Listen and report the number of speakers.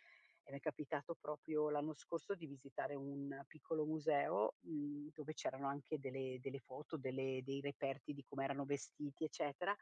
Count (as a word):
one